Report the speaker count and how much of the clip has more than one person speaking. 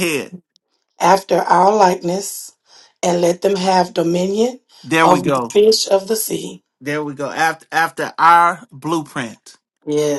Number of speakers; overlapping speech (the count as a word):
two, about 5%